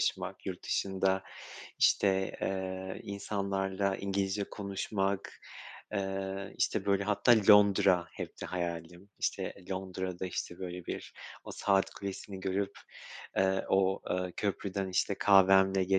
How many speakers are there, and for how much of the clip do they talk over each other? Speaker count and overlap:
1, no overlap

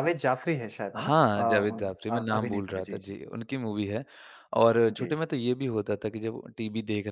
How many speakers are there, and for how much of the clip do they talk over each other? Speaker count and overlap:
2, about 23%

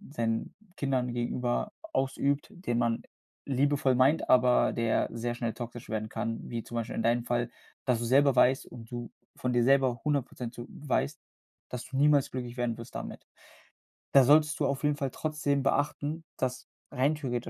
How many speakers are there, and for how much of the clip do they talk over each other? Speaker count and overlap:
1, no overlap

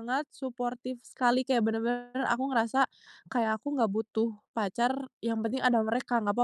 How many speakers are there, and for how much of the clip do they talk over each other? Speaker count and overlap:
1, no overlap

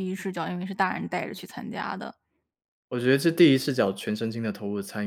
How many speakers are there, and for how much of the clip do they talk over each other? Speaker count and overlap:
2, no overlap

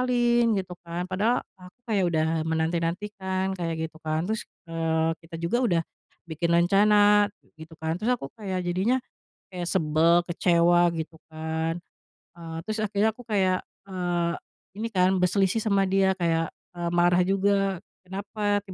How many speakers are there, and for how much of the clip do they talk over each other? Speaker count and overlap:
1, no overlap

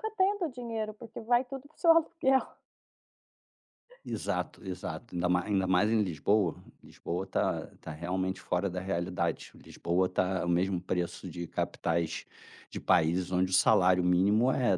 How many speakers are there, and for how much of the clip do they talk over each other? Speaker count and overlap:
2, no overlap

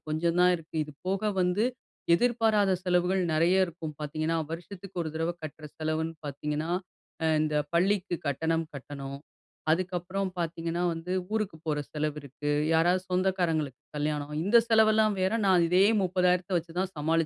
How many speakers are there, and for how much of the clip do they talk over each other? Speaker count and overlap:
1, no overlap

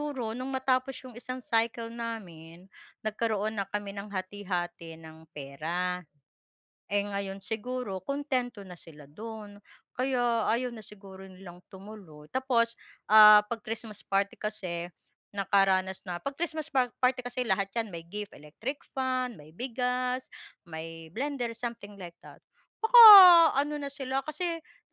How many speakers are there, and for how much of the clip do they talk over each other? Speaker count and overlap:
1, no overlap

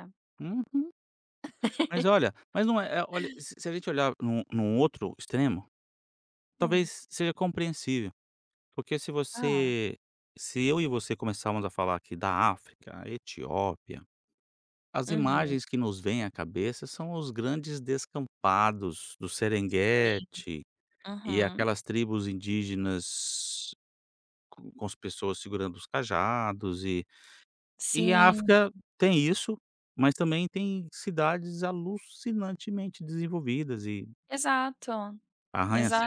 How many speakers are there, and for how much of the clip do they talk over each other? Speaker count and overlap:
2, about 8%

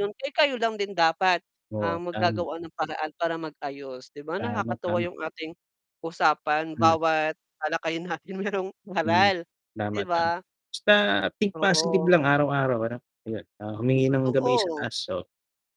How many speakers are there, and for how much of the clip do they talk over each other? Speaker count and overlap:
2, about 21%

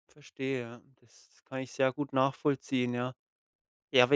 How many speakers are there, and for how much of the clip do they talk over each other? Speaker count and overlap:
1, no overlap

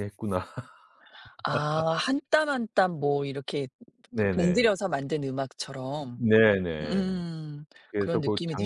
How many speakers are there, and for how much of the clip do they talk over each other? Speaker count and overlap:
2, about 17%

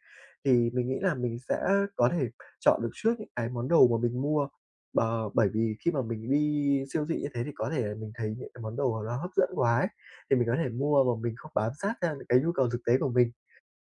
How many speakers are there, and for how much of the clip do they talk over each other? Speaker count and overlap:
1, no overlap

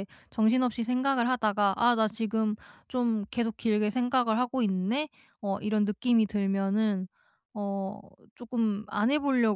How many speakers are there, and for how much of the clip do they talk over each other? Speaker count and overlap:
1, no overlap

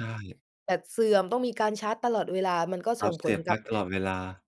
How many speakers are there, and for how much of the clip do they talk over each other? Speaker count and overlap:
2, about 12%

